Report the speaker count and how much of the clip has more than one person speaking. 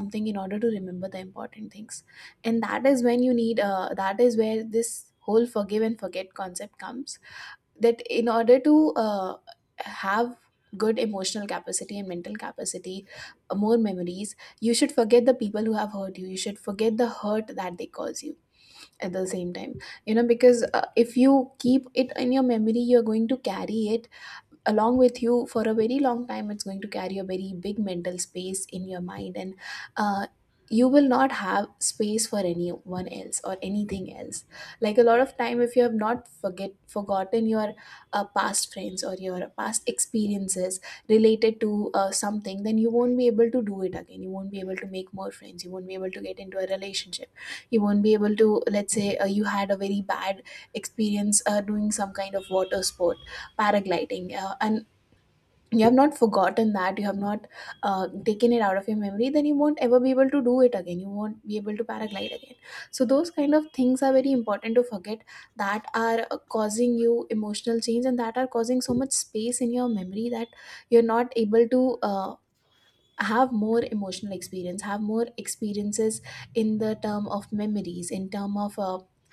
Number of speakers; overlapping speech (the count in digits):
1, no overlap